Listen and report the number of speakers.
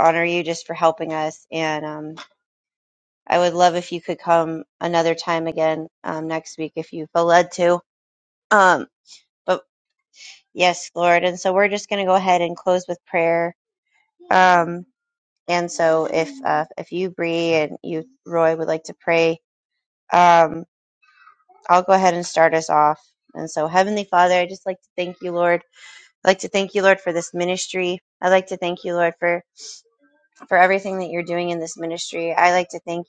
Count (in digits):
1